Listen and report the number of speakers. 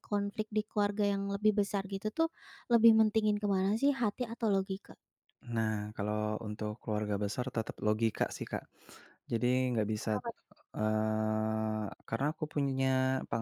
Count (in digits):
2